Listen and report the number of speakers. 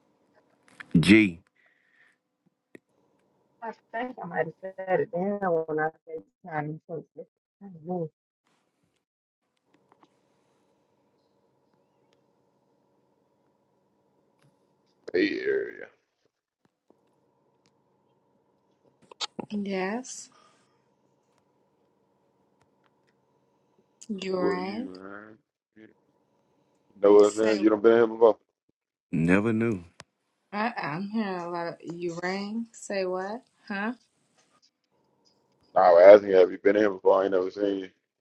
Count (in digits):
4